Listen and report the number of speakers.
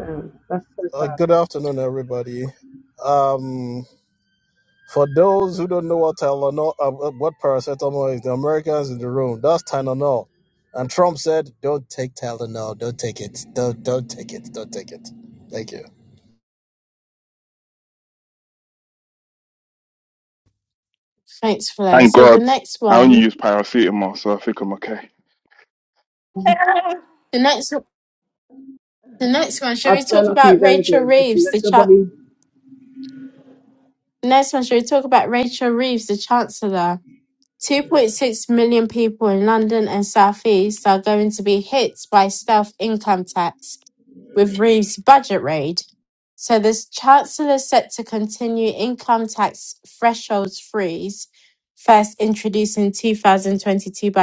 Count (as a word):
four